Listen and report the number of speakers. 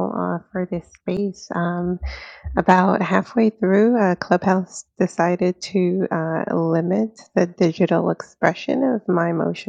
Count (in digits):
1